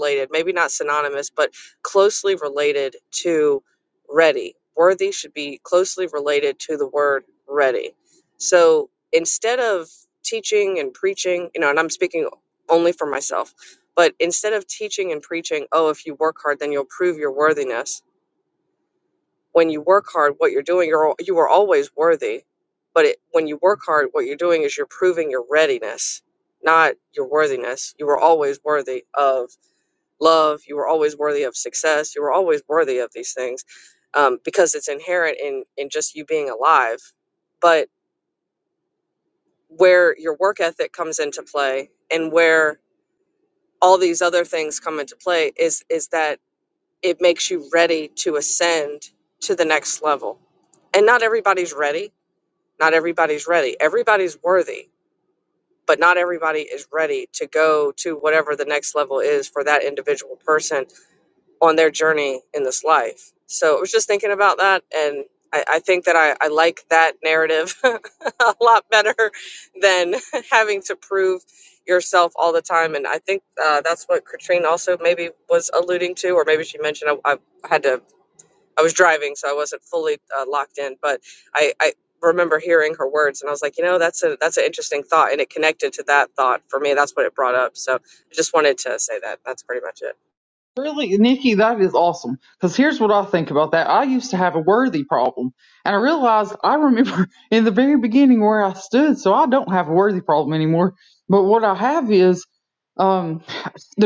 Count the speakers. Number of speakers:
two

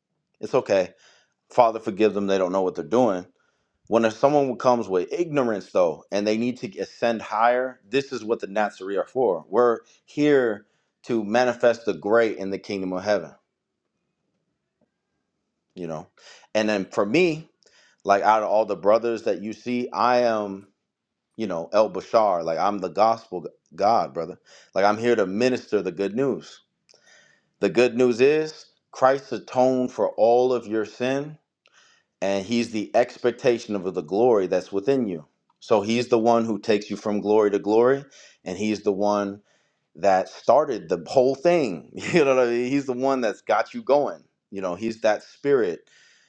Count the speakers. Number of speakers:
one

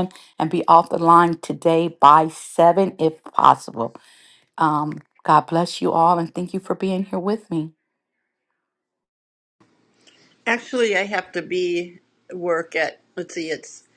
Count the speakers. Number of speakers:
two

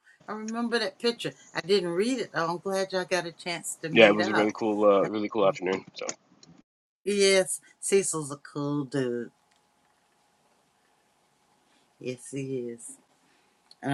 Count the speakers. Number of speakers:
two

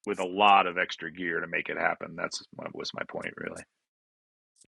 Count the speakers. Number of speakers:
one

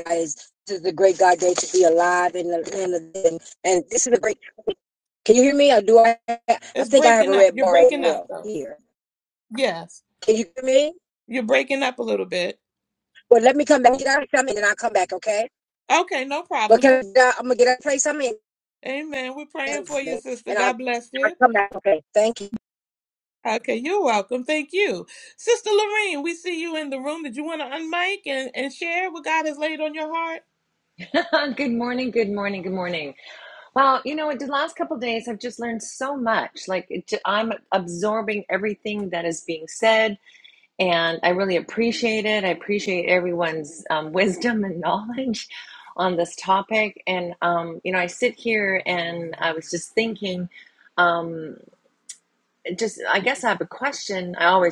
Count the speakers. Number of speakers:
three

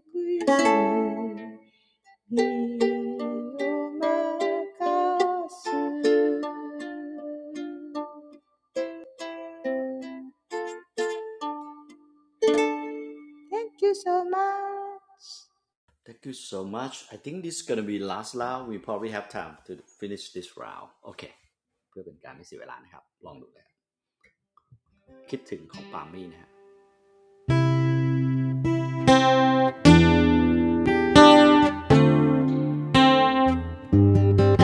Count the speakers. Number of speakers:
two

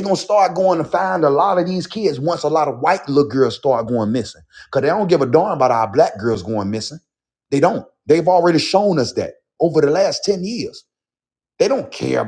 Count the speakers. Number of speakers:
one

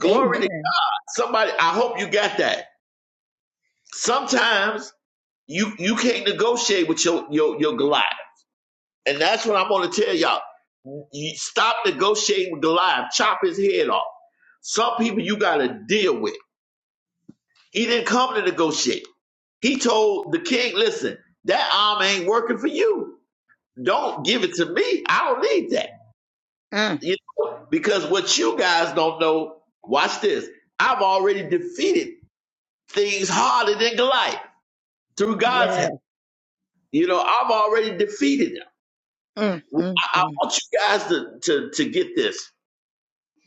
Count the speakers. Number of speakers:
two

